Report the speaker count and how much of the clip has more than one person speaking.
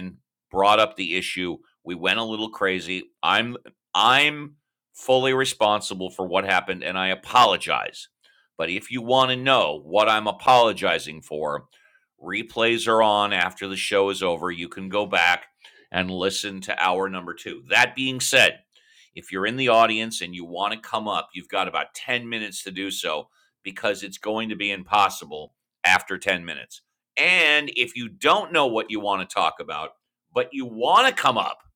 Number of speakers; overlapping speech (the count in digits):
1, no overlap